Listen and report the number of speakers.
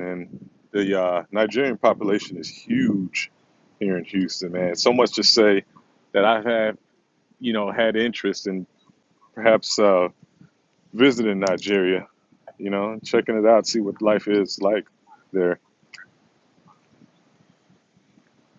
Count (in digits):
1